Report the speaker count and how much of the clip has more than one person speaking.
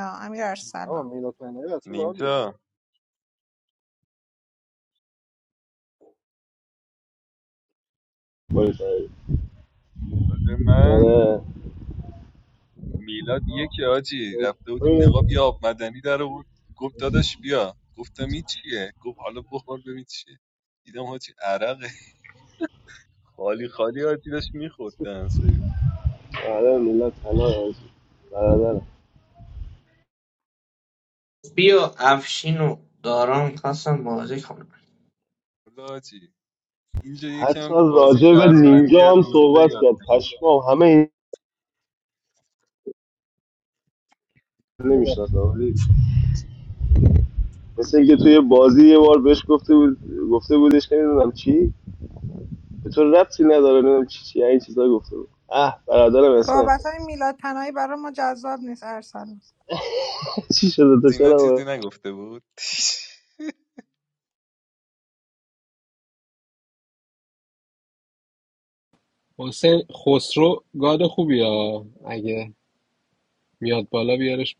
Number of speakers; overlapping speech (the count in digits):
6, about 6%